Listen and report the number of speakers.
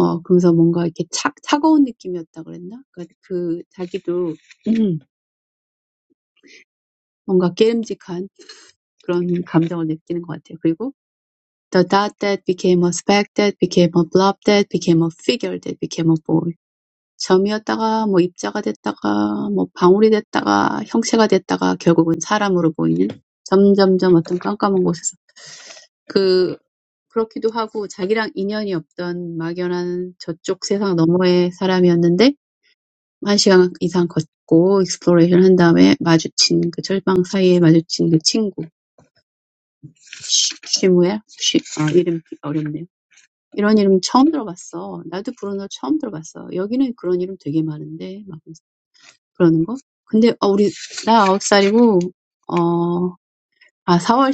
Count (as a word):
one